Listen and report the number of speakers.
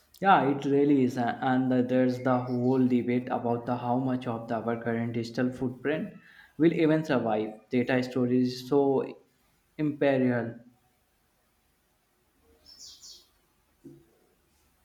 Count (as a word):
one